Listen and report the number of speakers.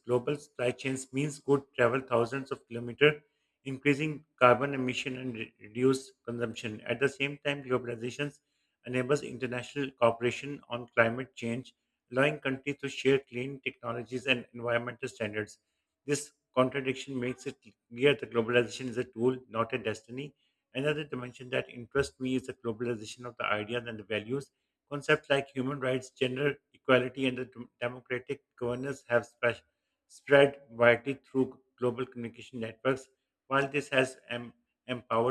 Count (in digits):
1